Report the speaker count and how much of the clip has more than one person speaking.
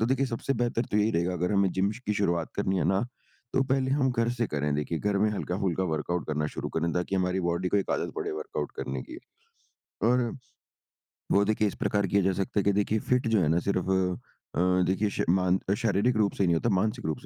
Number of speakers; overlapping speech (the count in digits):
1, no overlap